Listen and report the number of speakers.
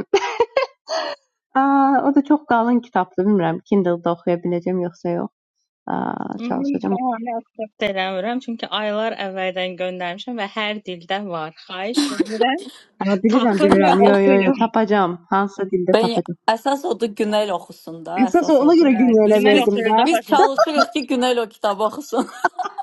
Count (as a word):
three